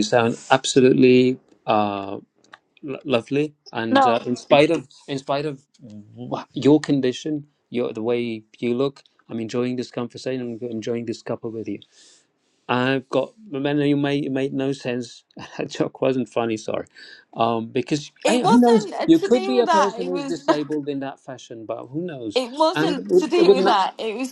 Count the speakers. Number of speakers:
two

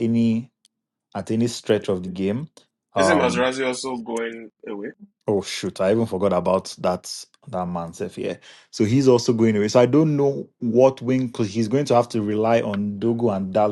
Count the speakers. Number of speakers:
two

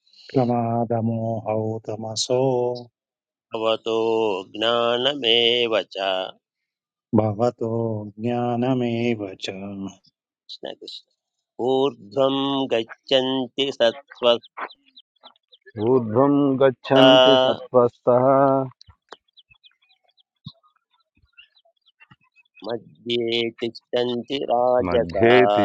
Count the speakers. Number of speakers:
three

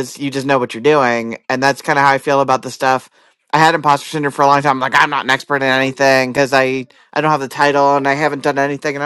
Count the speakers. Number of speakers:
one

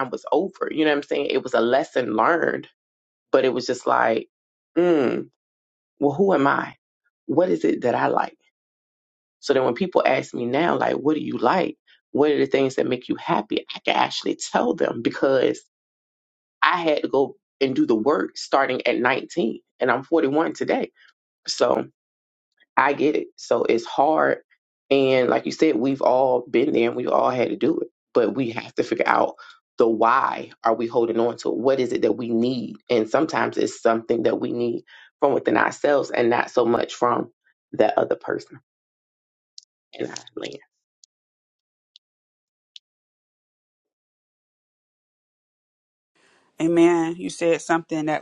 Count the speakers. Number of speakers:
two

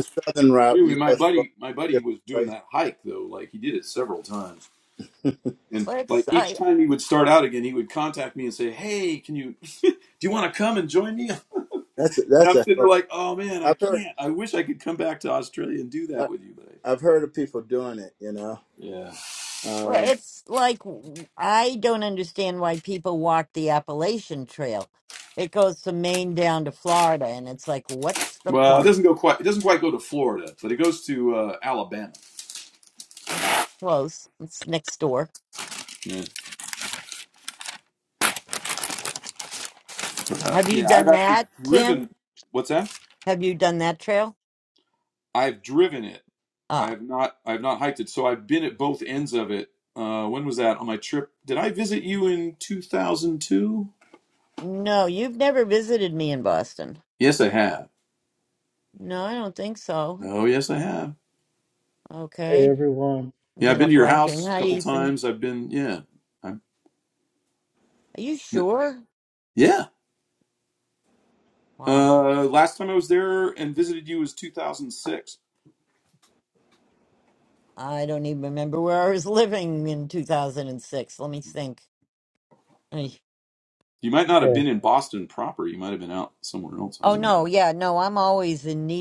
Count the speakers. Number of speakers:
four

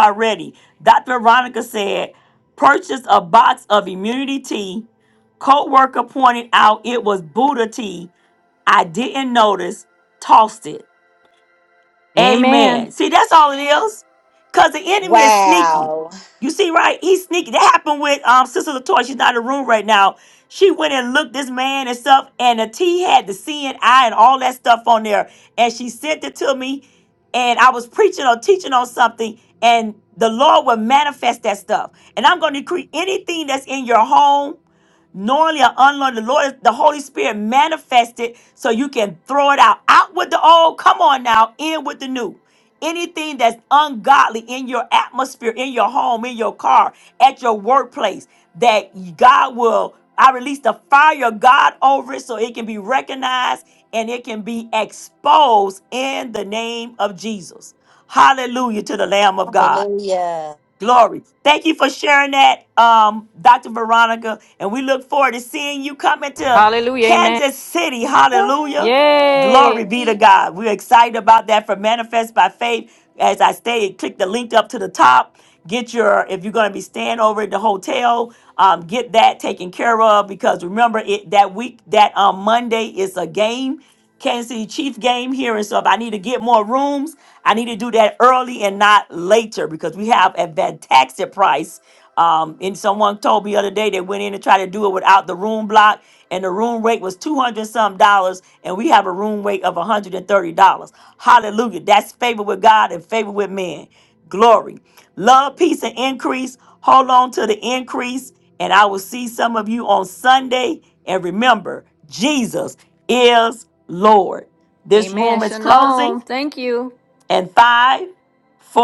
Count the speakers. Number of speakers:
three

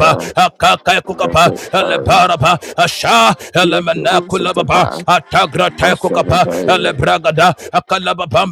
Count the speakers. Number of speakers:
two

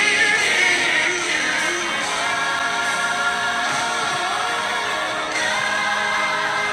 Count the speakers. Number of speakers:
zero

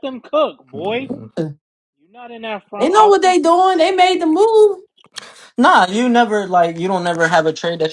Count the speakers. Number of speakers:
three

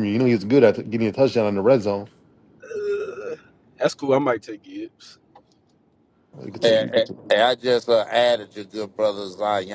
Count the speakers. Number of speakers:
three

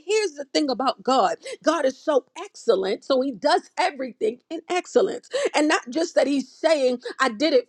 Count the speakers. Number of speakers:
one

